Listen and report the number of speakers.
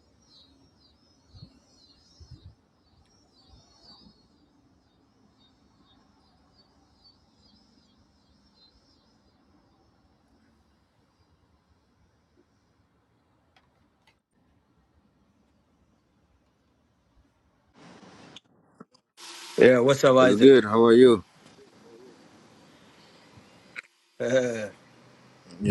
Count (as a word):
two